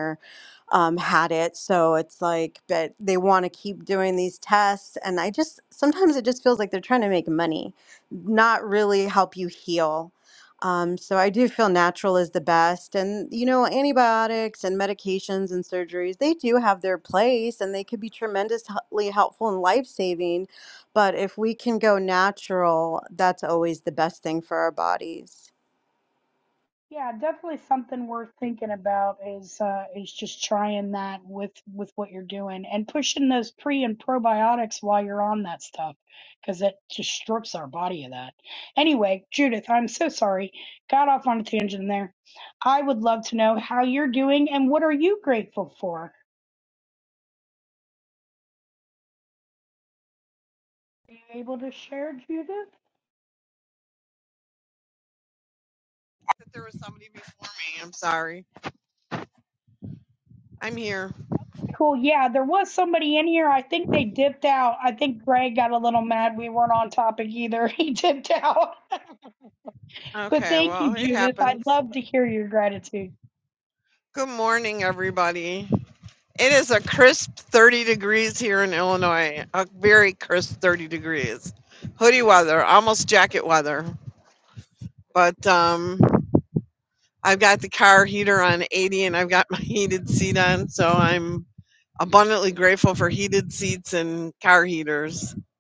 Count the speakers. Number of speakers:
3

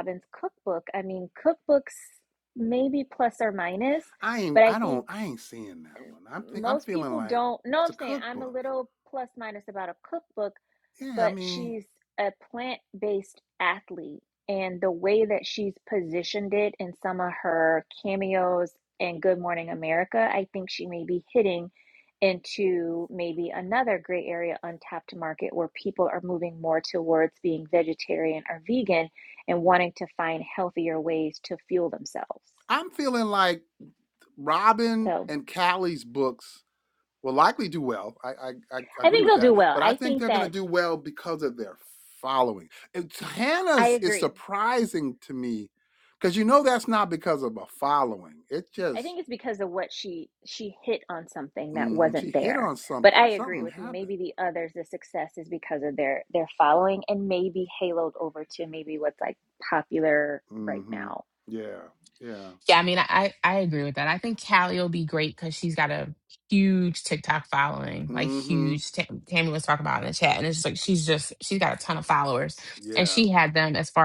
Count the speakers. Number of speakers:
3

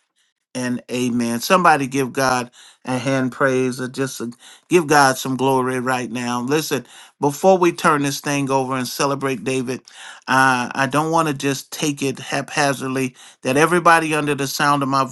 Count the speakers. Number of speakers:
1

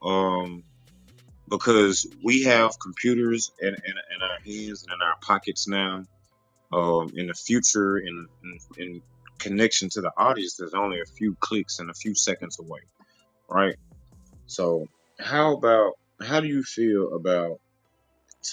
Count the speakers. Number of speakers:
1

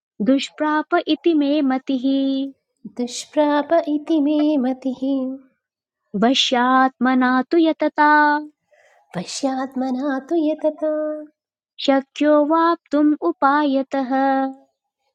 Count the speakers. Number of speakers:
2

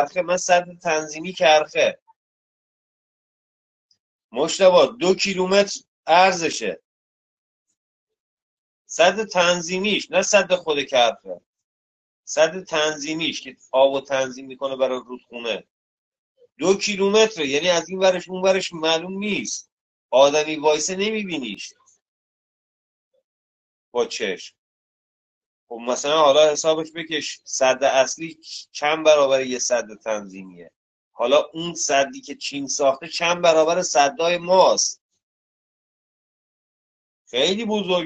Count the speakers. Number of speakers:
1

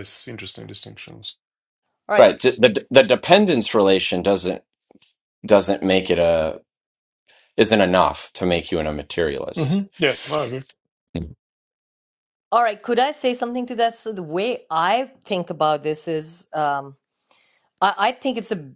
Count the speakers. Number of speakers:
3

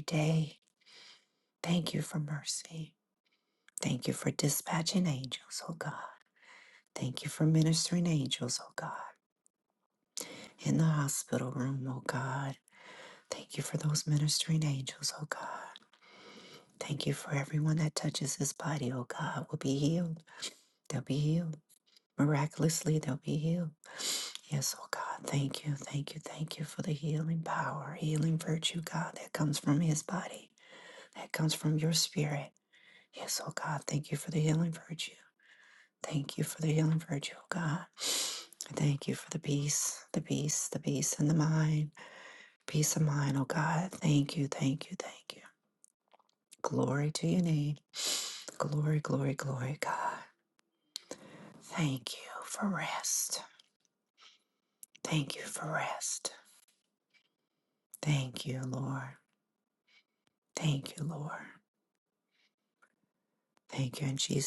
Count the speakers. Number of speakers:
1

